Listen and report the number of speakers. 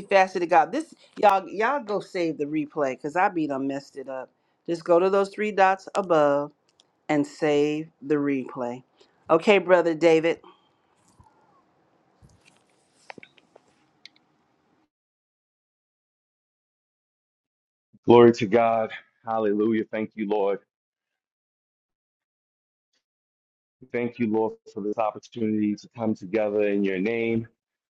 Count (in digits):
2